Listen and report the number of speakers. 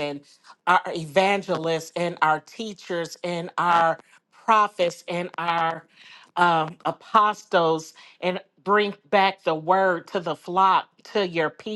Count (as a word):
one